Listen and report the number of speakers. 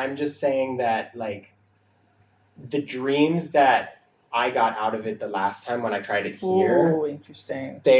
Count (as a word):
two